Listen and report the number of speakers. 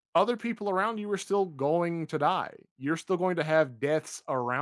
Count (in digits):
1